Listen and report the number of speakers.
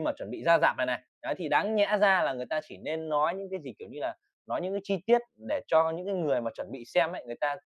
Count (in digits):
1